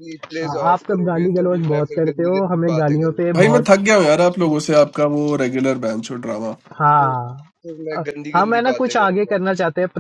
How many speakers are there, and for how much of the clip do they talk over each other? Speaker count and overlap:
three, about 47%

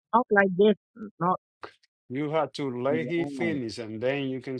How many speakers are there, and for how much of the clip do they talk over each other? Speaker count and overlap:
two, about 14%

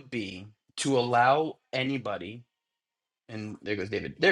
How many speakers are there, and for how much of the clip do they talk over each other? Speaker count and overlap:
one, no overlap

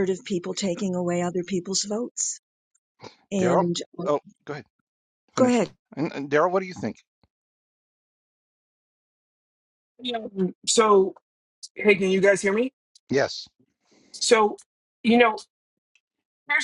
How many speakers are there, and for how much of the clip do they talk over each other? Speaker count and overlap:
three, about 3%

